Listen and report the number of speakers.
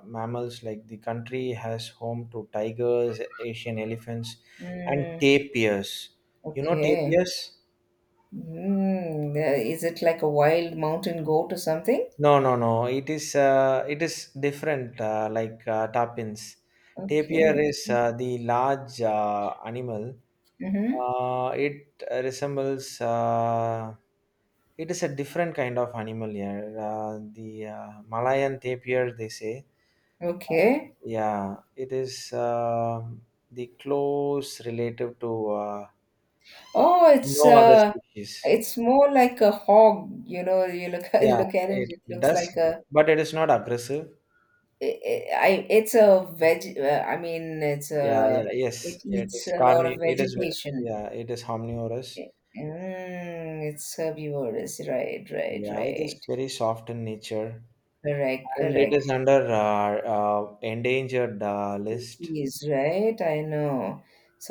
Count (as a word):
two